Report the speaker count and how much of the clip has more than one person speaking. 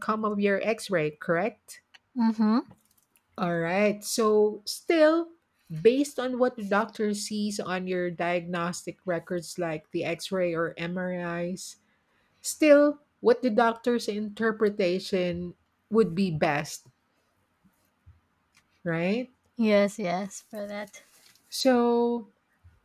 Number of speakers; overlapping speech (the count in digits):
2, no overlap